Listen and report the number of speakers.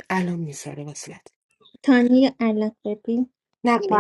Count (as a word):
two